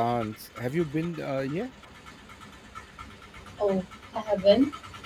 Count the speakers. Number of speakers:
two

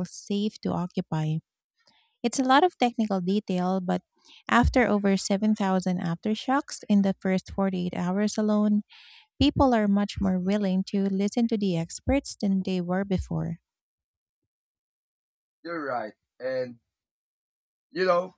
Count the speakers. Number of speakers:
two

